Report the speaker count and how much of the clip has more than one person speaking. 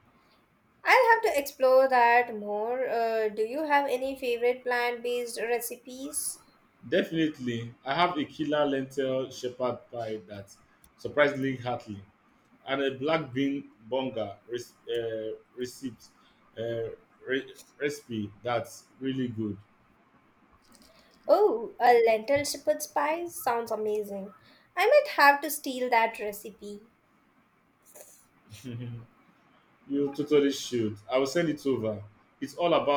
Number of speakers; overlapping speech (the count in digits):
2, no overlap